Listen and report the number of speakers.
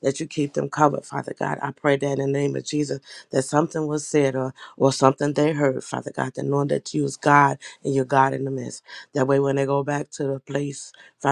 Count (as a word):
one